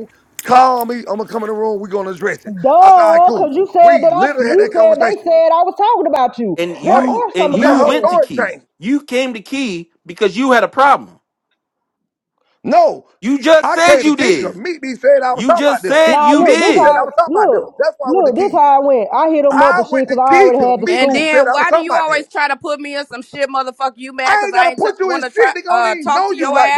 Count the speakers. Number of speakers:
4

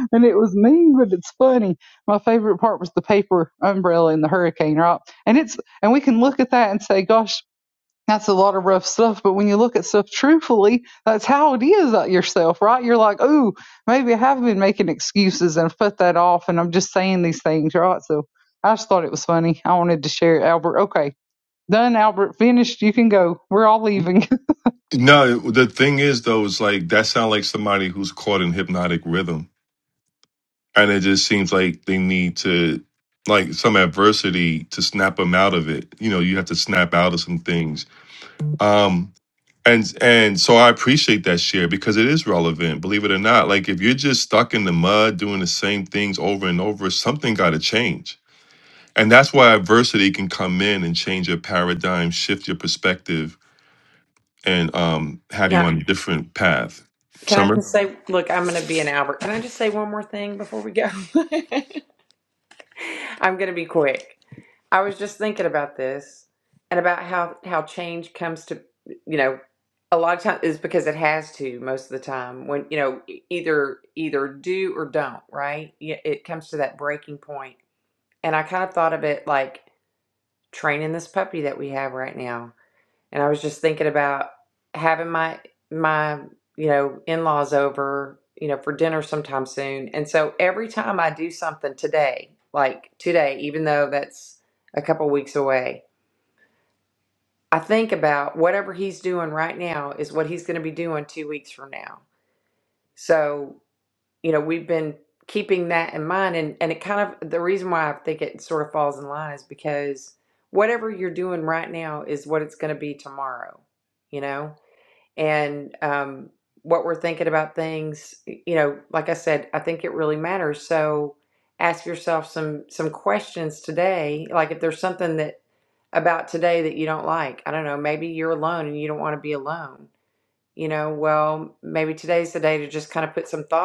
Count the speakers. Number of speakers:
3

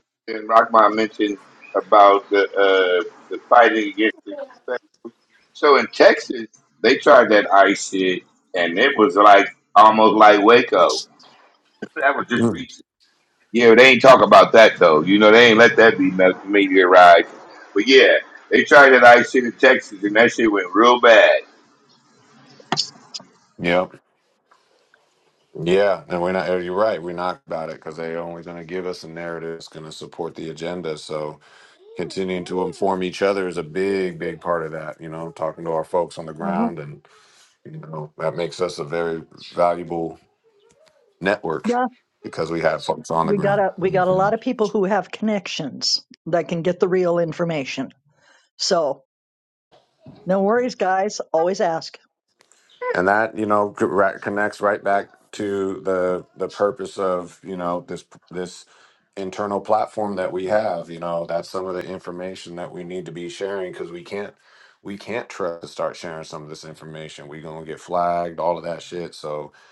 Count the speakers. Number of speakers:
3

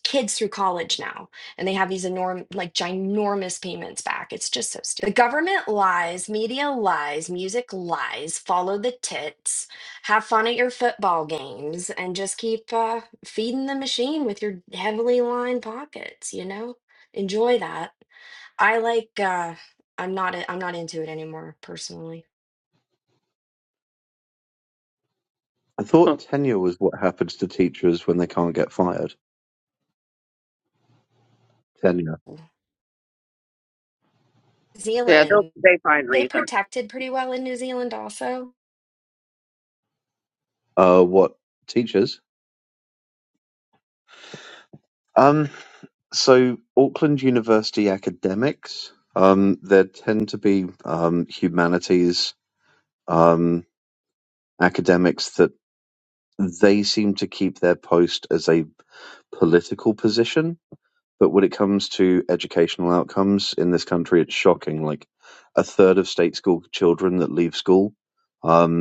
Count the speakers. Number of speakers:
3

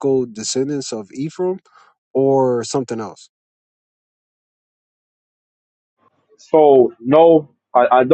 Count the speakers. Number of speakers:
2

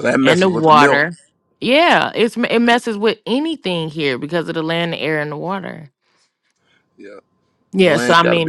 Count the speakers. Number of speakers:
2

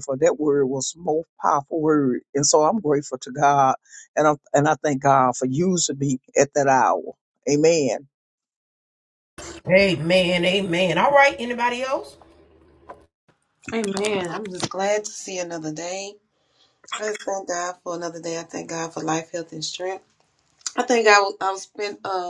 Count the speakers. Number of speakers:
3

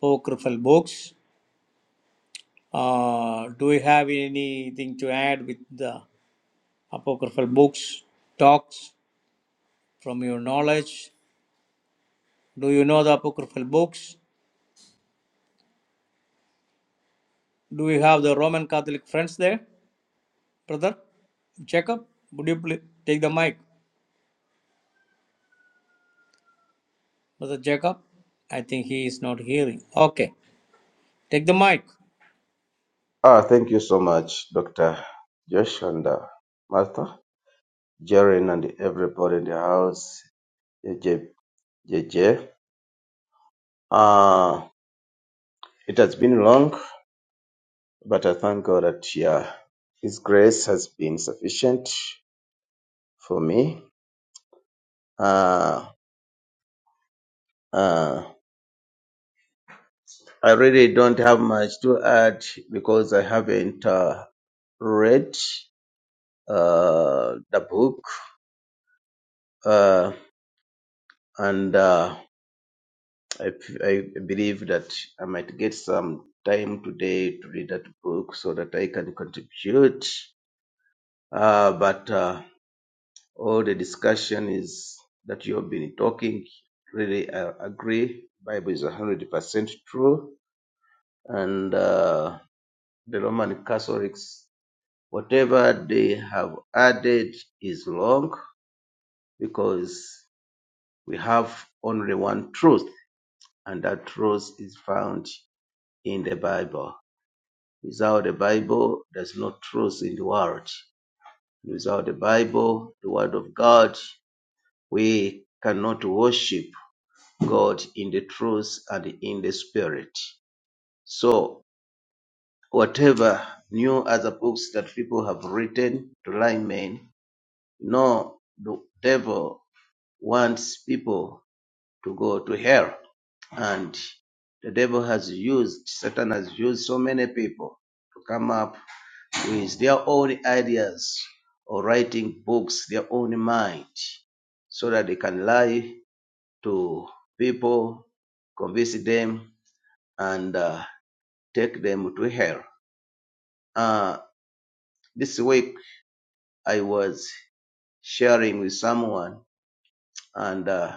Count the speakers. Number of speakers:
2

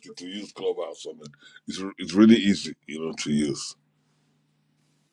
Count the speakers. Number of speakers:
1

